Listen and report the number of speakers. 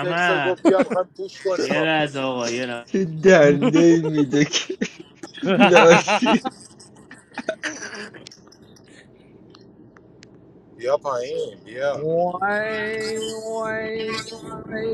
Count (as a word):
four